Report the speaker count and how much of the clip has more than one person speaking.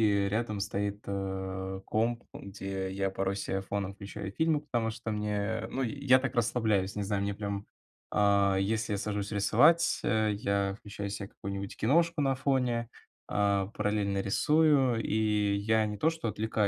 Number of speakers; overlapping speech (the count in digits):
1, no overlap